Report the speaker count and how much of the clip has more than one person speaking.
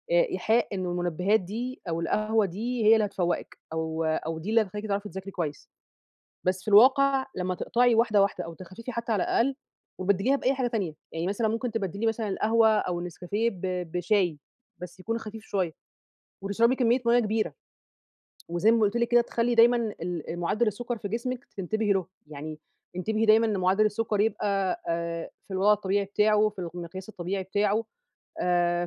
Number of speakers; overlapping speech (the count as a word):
one, no overlap